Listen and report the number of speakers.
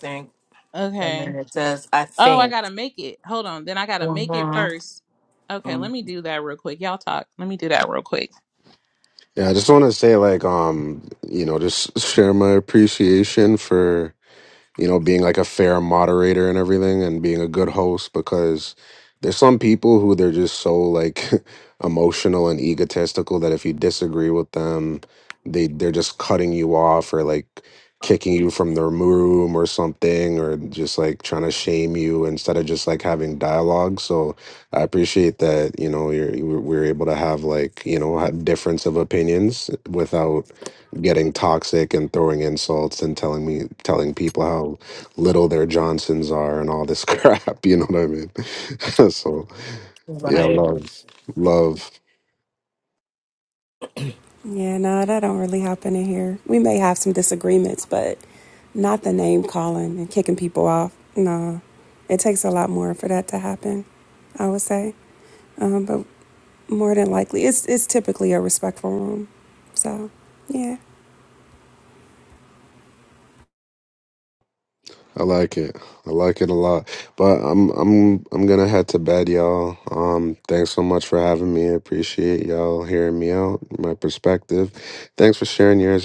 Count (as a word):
four